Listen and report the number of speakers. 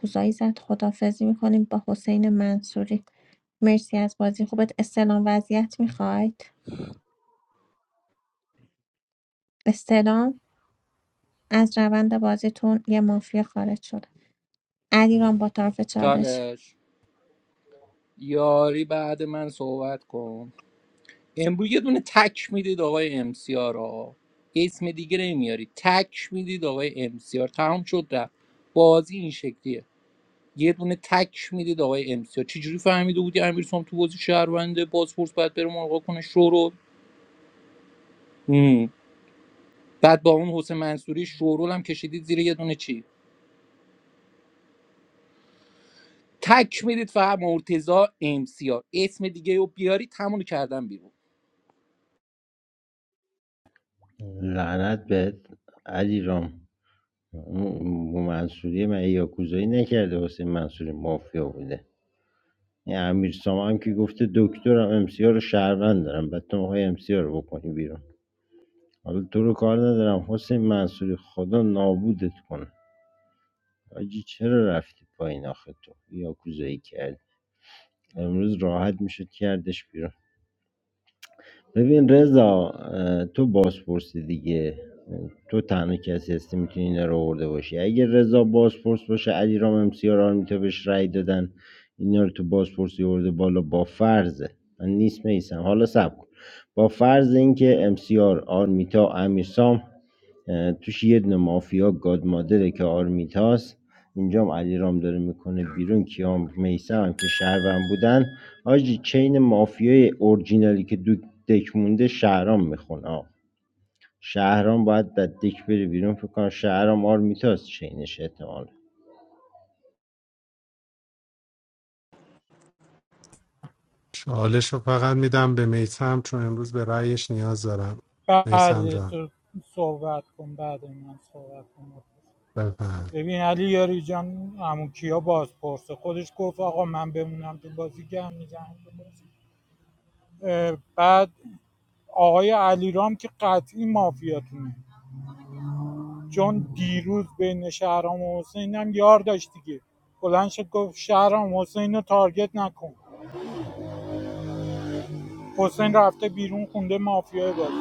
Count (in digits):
5